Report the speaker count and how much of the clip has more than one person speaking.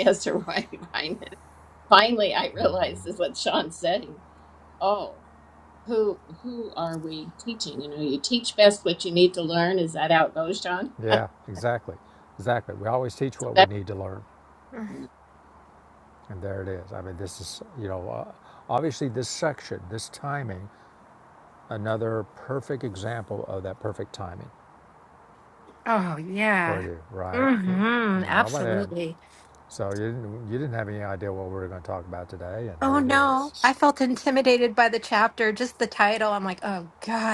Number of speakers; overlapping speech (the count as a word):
three, about 7%